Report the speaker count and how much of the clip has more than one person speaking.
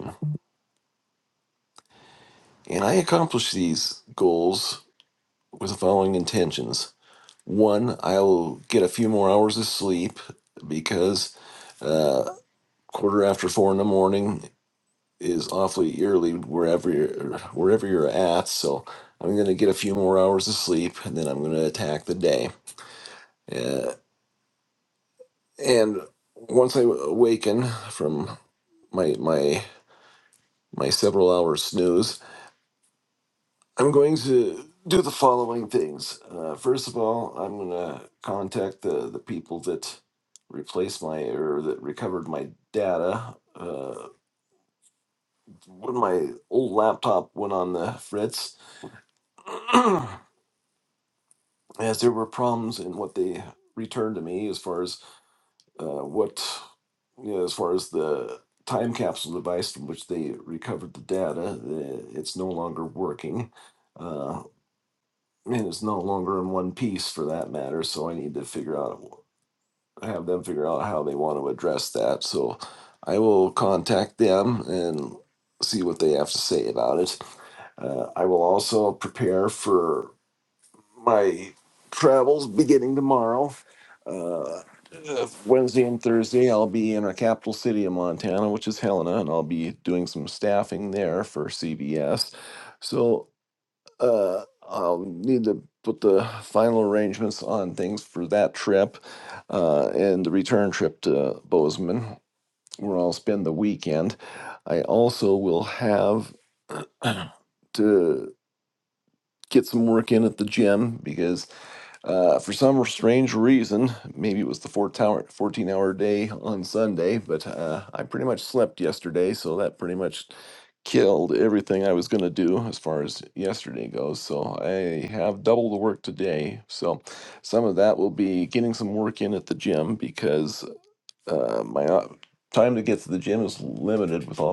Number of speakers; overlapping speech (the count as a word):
one, no overlap